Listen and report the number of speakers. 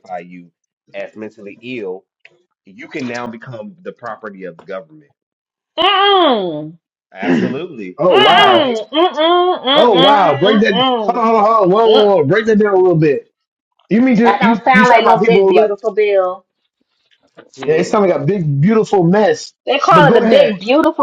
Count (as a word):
three